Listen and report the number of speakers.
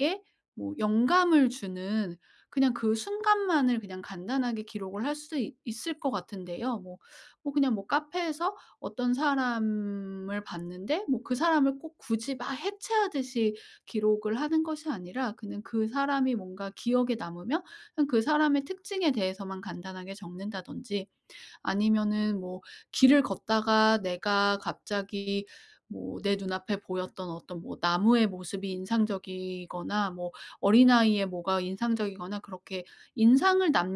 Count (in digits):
1